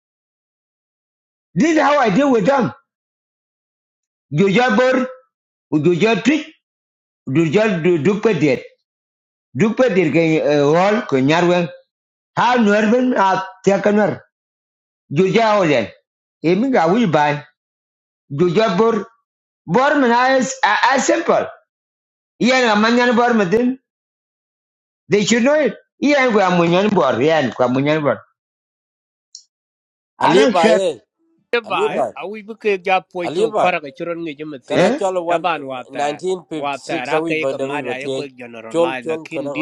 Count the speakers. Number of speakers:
3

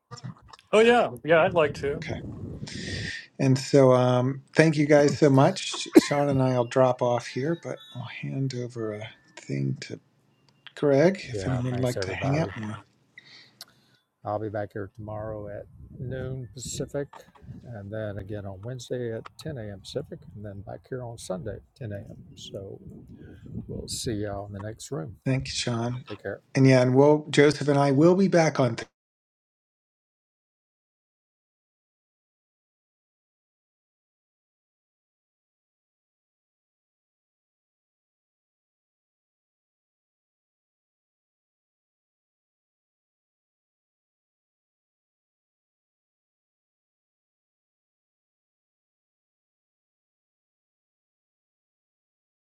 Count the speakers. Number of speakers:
3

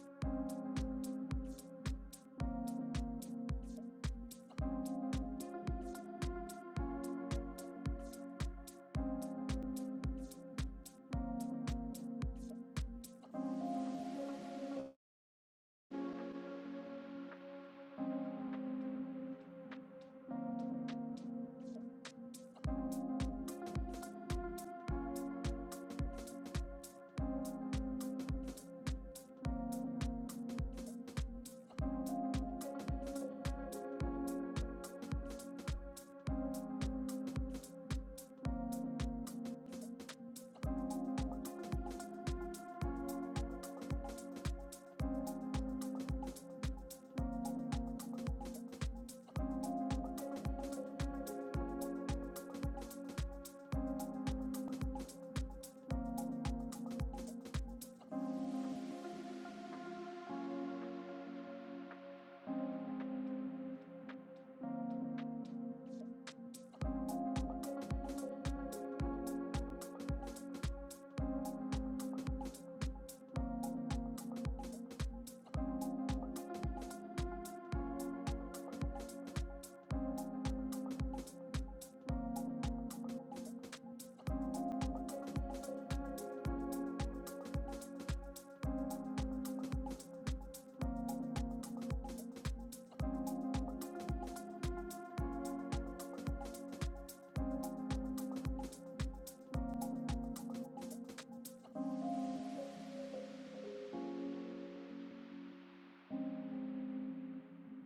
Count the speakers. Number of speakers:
0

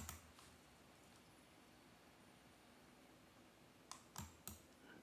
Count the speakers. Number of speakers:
0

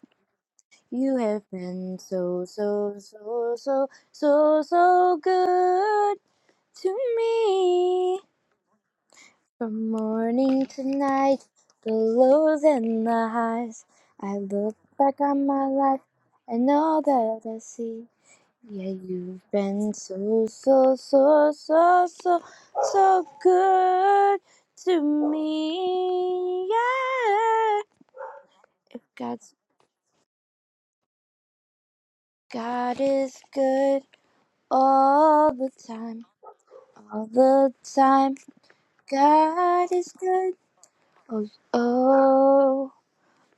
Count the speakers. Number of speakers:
1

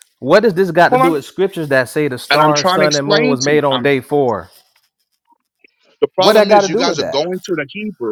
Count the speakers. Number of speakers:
2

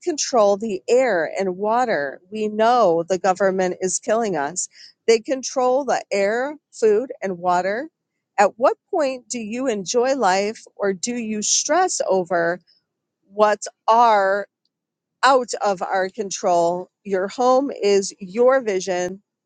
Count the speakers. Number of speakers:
1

